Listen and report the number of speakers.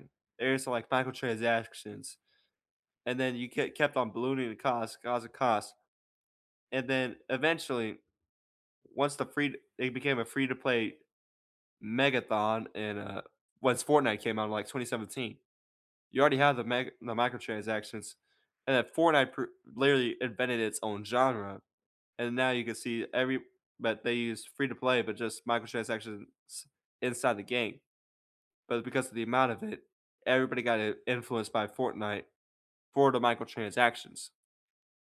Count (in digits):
1